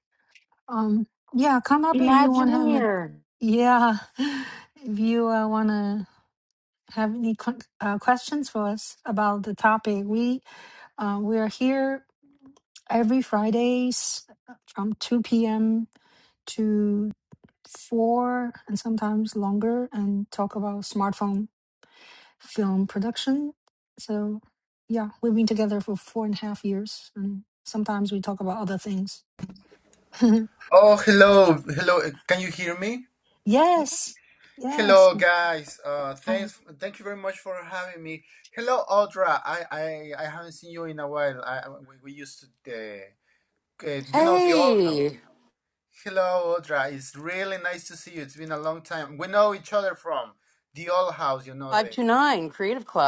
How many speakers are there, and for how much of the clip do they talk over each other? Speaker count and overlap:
3, about 5%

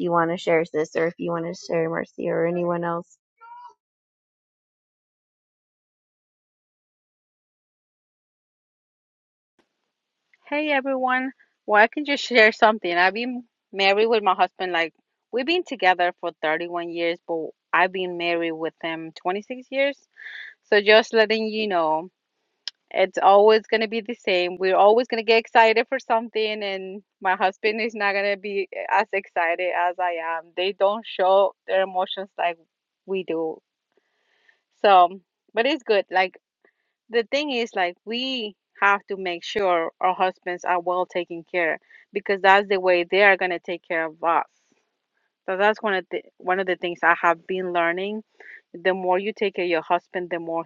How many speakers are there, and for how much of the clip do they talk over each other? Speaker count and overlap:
2, no overlap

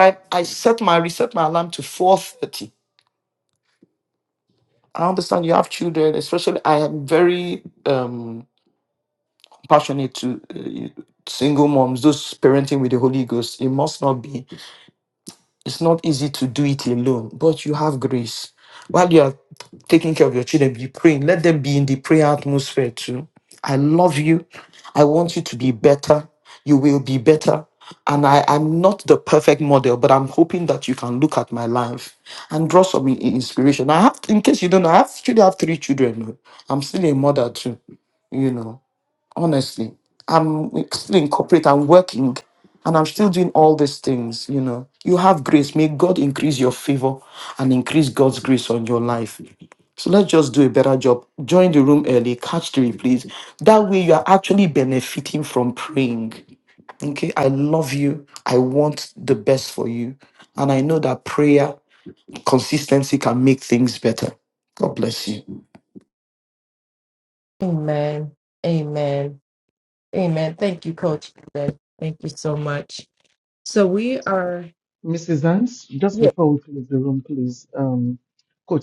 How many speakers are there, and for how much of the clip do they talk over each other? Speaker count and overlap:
3, under 1%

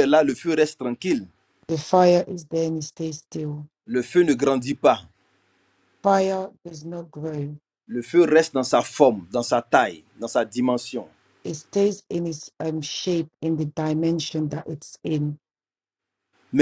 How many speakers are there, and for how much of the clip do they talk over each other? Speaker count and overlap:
2, no overlap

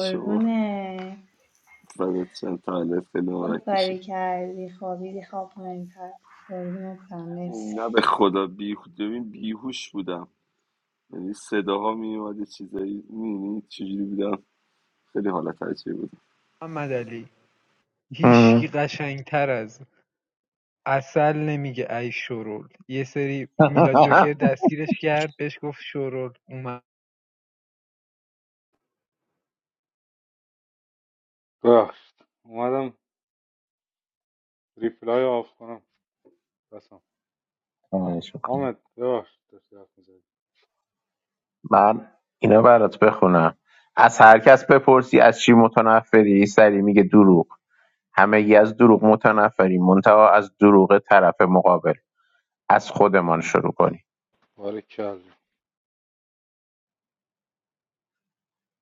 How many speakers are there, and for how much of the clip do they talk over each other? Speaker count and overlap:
5, about 3%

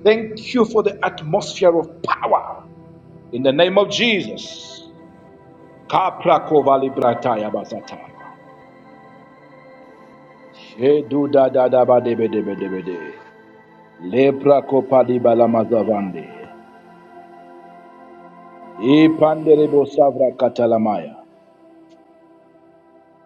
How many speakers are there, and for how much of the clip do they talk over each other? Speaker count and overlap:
1, no overlap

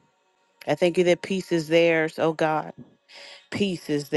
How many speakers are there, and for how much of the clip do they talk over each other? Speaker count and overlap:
1, no overlap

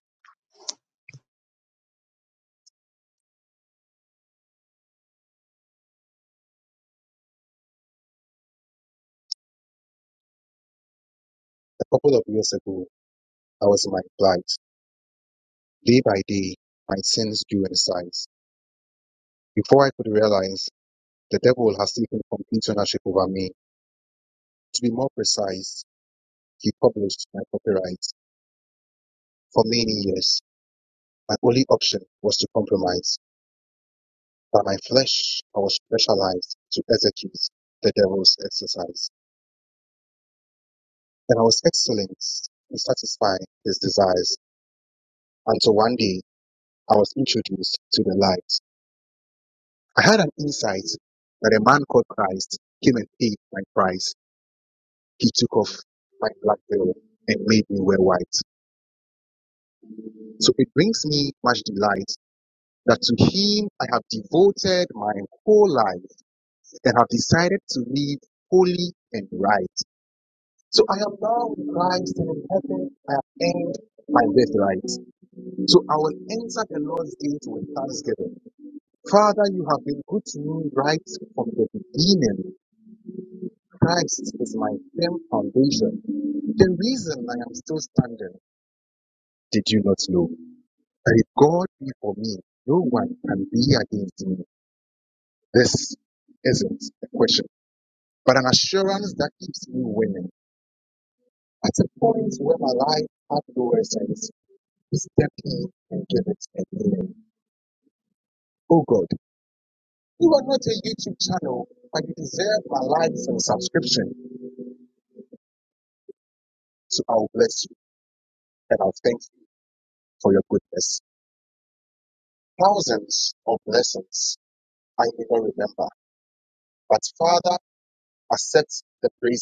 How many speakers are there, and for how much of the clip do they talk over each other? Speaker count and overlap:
1, no overlap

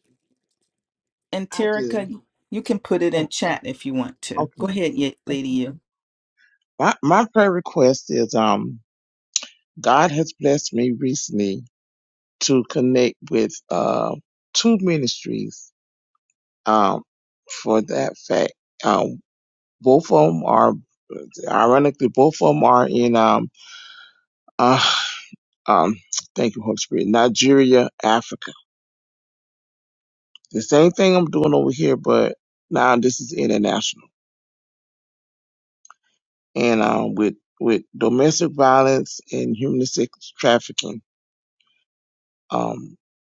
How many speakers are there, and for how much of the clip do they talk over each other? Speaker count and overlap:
2, about 2%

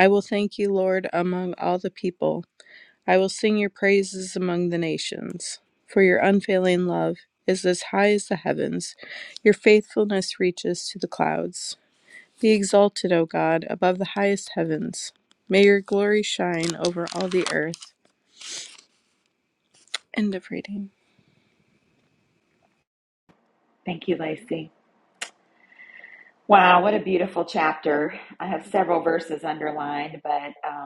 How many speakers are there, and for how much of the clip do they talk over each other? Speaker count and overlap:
2, no overlap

